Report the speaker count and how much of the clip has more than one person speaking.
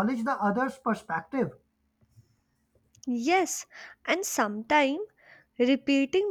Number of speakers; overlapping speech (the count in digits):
2, no overlap